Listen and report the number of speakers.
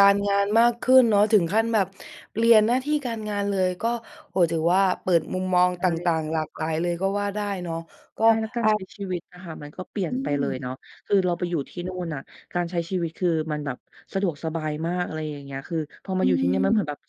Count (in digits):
2